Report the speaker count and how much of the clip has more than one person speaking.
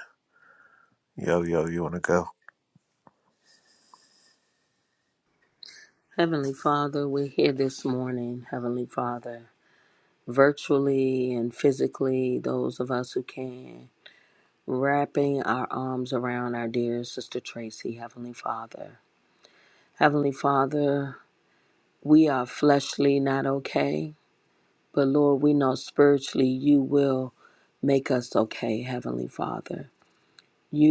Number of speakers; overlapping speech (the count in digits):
2, no overlap